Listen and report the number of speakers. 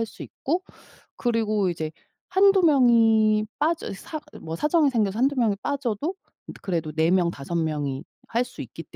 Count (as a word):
one